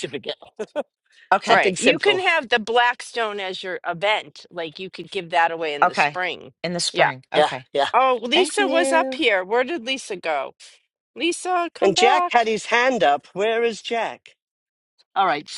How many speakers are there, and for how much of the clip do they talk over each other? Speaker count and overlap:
three, about 19%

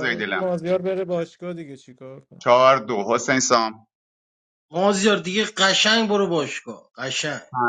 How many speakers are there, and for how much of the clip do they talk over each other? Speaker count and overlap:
three, about 7%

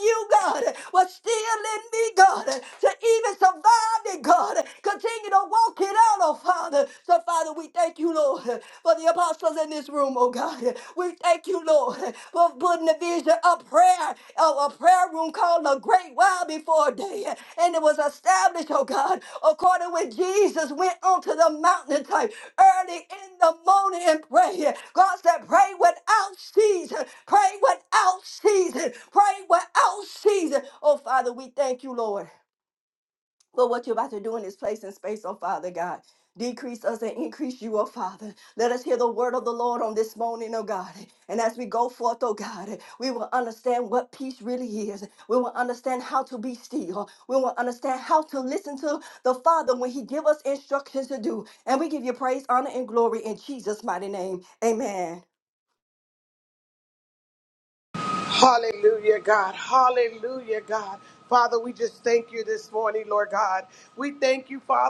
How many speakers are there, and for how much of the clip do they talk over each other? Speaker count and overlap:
two, no overlap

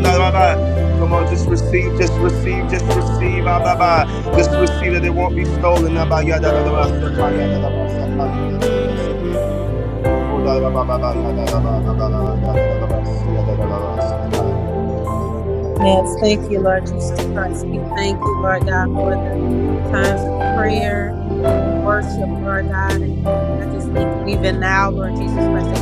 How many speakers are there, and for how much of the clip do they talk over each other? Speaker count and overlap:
two, no overlap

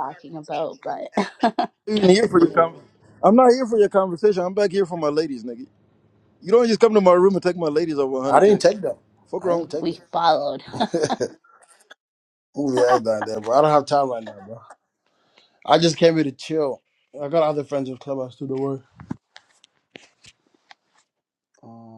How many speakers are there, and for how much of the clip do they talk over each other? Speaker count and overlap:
three, about 3%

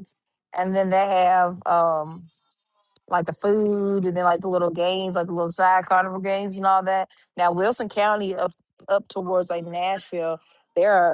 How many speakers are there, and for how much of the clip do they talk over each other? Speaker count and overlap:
one, no overlap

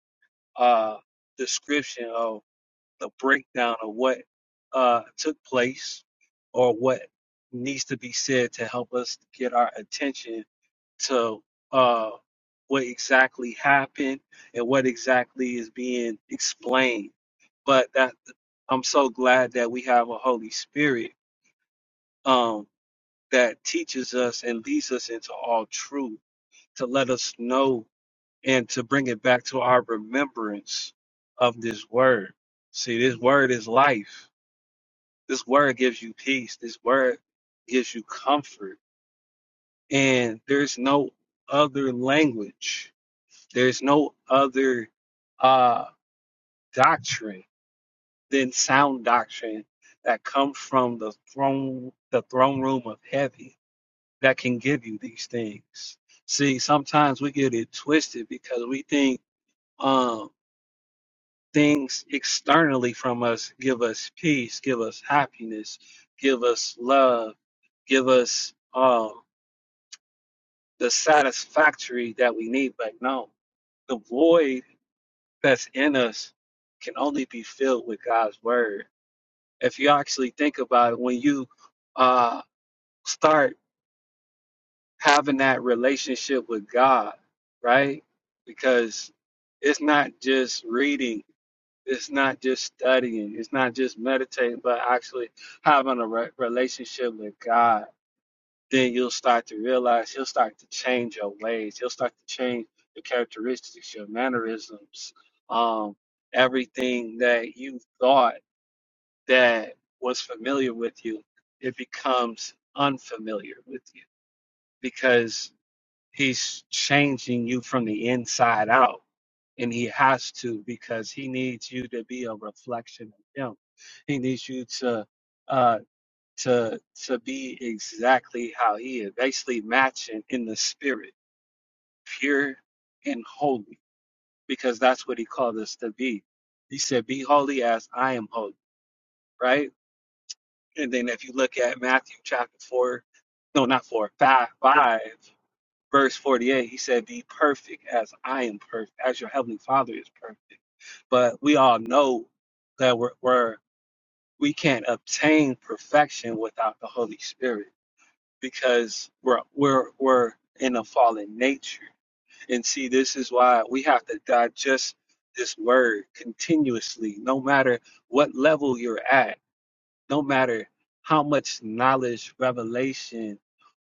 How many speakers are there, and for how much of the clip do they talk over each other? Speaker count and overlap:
one, no overlap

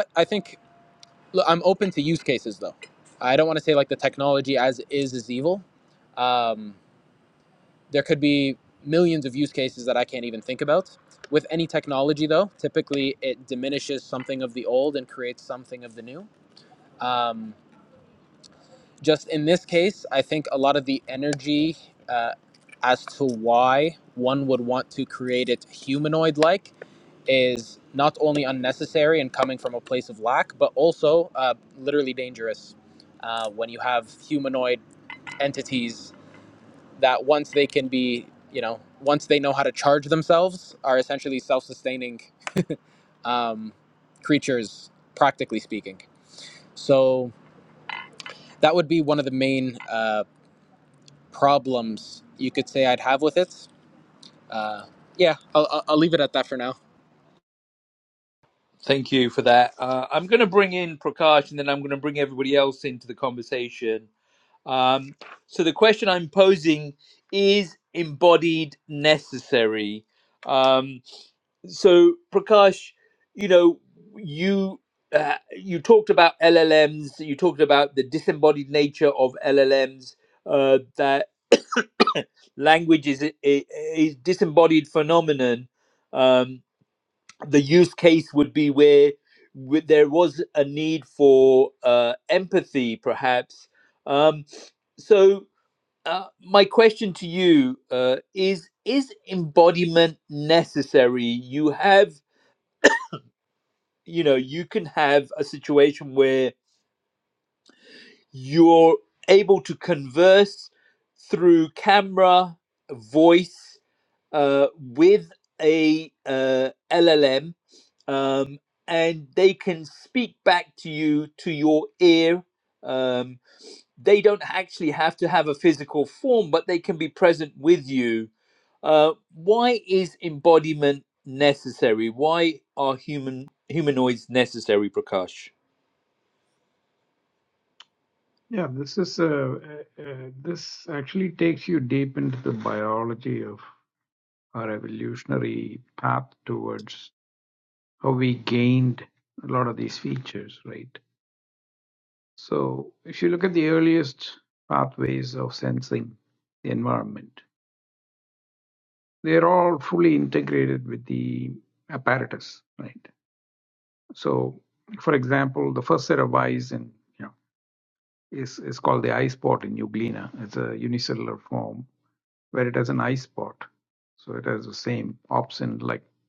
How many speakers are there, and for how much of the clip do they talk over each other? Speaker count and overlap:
three, no overlap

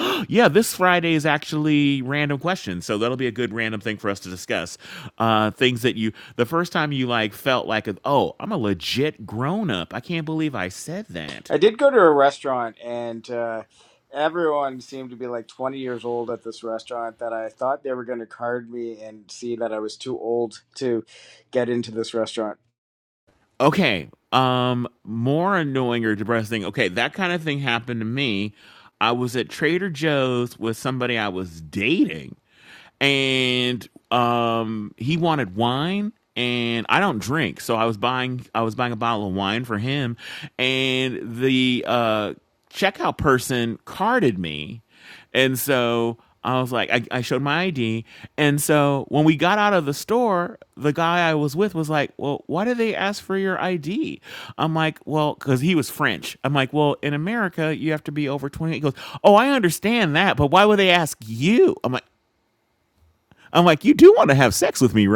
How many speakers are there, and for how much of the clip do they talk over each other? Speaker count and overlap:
two, no overlap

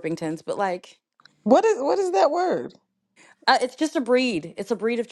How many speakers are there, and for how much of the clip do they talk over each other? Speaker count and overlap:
two, no overlap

